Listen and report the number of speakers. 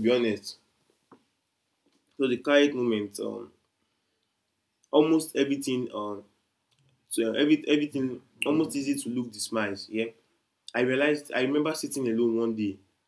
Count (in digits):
1